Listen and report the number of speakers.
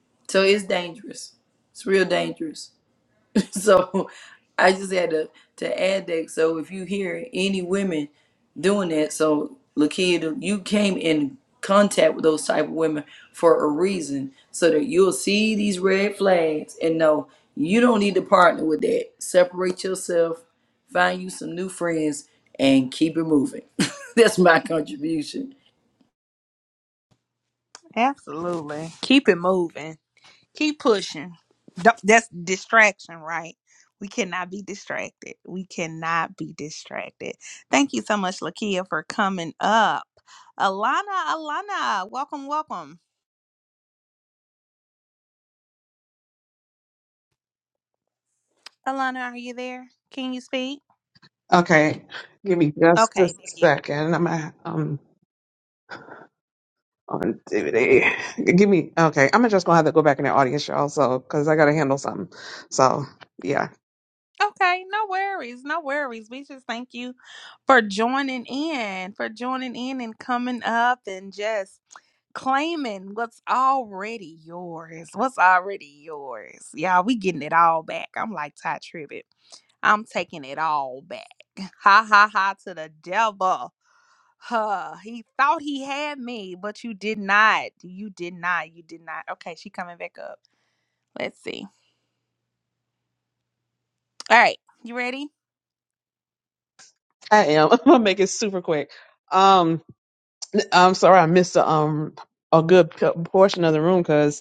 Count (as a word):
three